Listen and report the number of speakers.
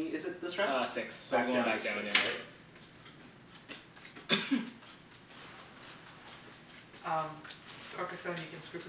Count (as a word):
three